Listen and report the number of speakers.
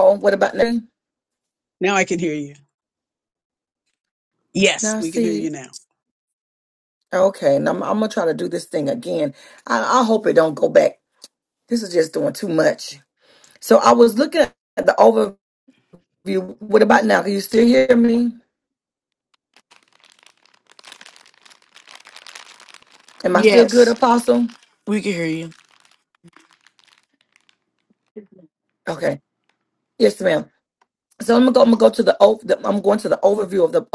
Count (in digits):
3